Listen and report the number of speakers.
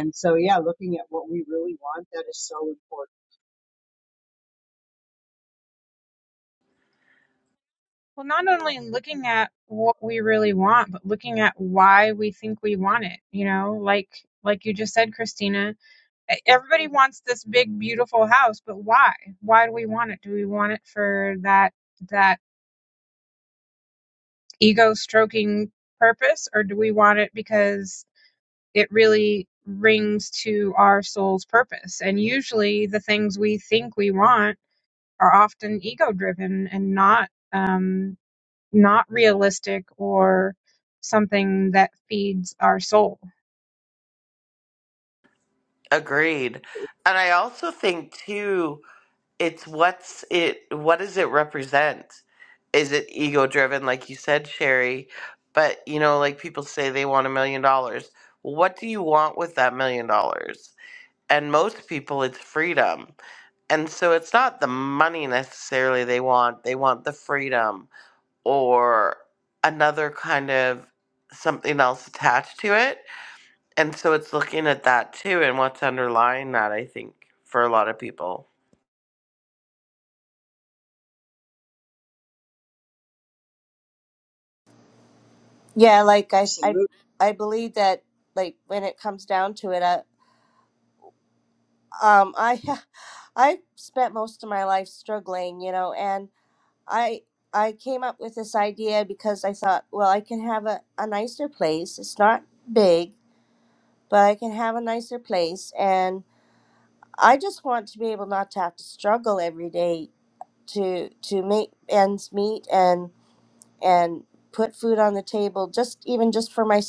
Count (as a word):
four